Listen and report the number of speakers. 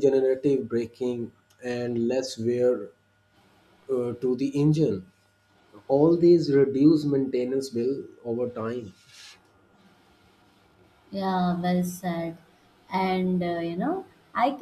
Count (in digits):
2